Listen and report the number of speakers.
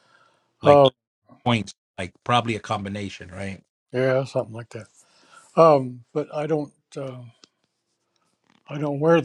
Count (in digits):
2